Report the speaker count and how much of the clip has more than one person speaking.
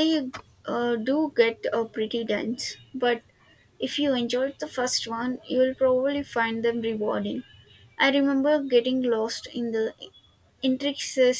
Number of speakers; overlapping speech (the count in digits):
1, no overlap